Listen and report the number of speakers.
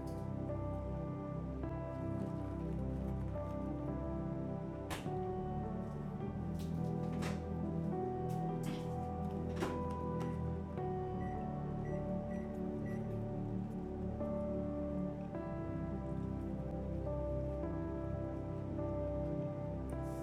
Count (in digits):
0